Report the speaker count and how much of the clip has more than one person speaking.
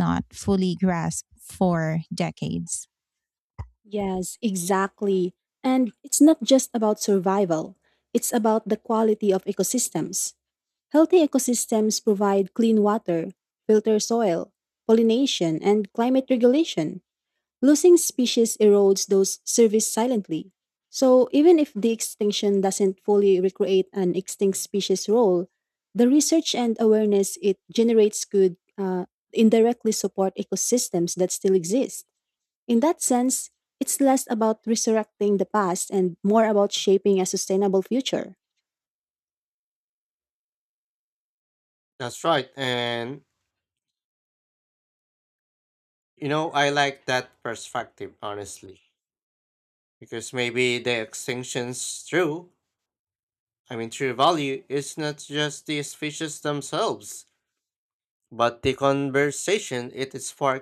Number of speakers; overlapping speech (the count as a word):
three, no overlap